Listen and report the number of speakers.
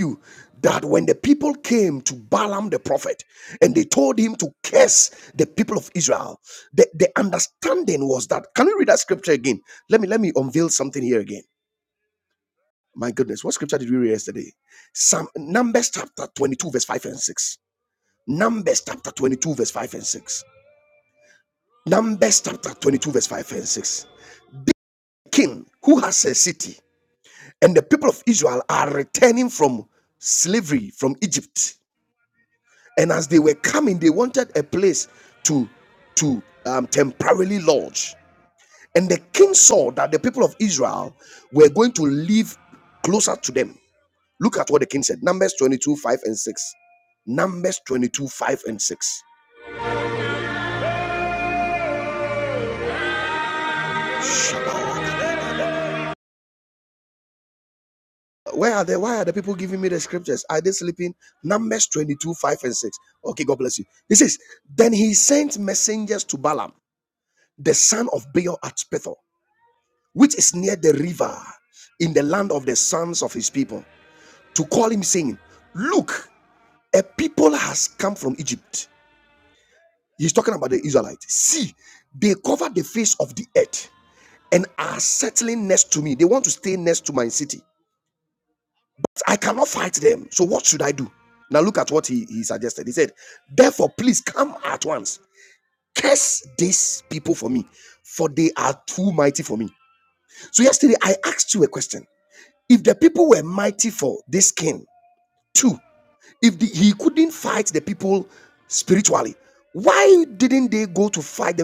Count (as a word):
one